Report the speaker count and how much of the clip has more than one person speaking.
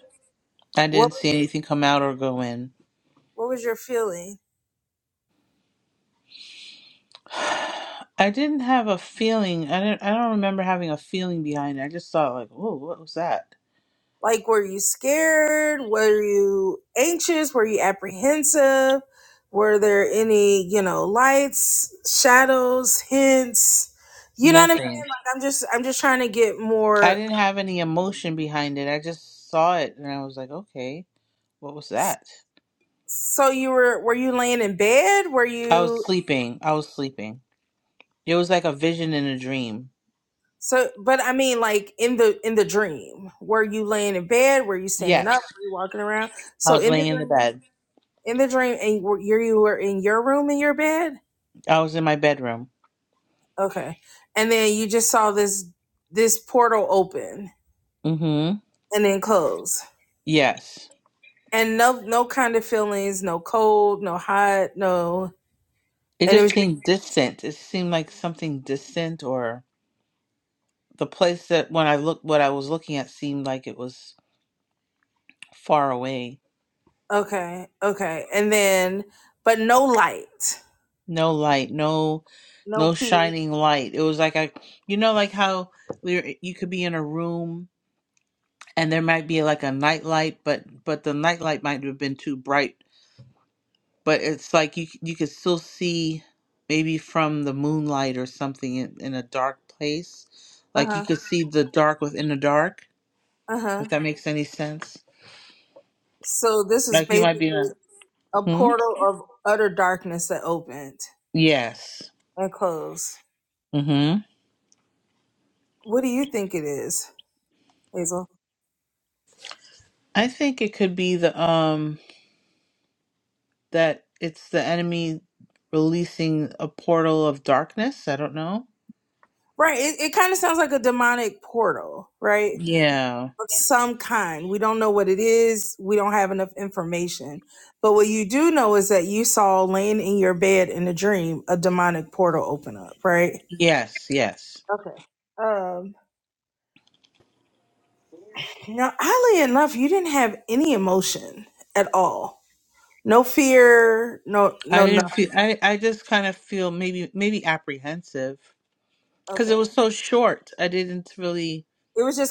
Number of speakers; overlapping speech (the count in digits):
2, about 3%